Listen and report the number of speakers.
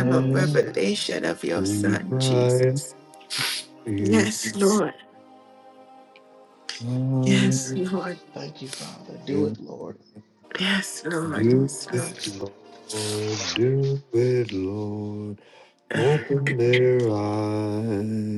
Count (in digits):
3